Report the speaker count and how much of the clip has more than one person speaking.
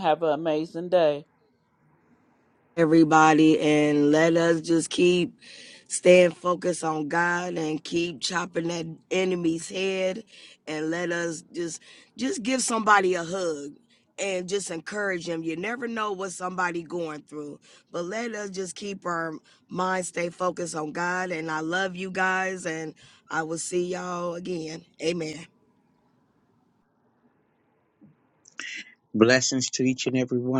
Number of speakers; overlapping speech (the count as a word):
three, no overlap